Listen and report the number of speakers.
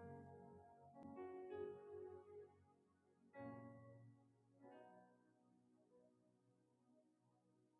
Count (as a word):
zero